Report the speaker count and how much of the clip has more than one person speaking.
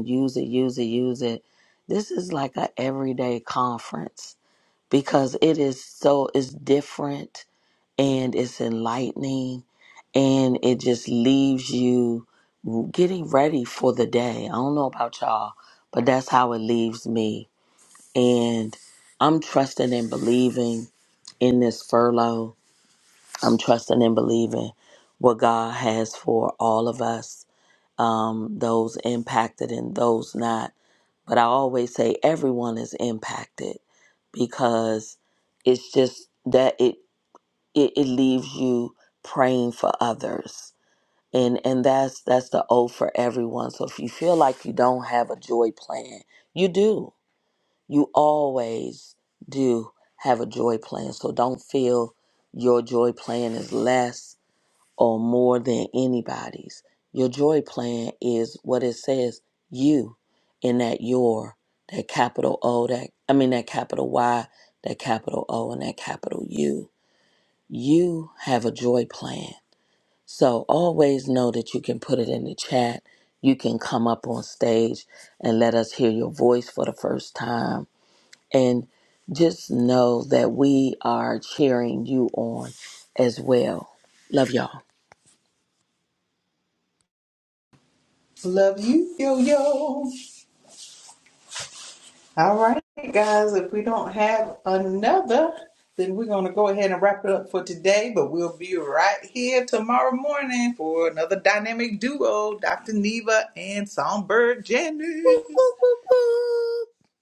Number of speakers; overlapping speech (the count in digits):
2, under 1%